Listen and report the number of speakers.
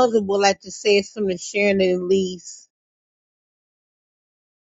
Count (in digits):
1